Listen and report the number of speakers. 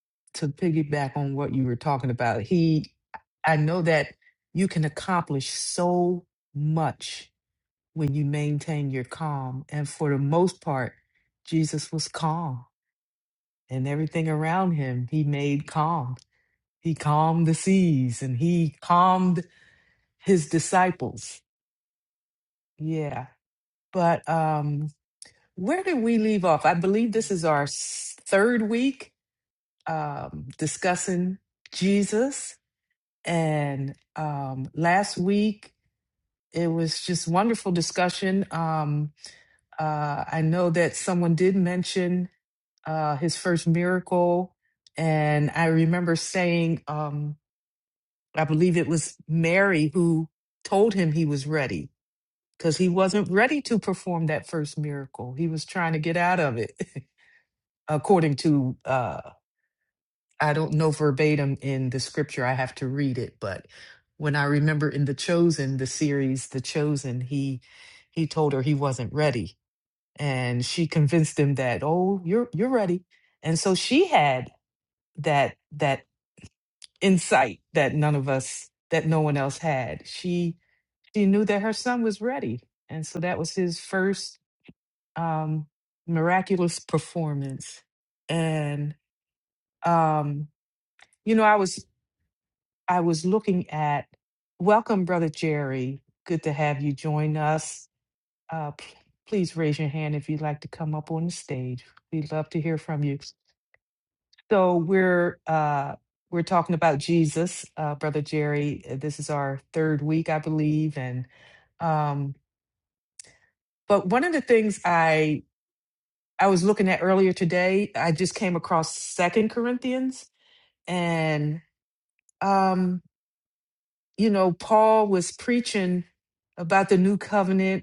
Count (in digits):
1